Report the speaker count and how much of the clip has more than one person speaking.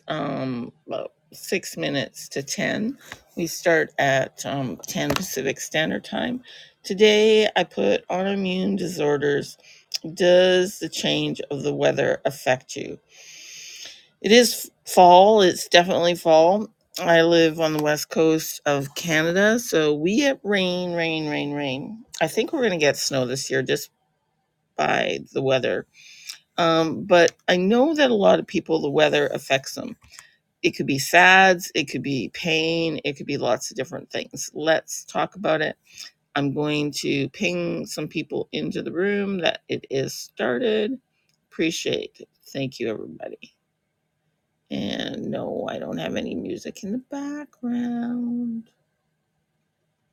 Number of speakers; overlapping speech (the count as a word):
one, no overlap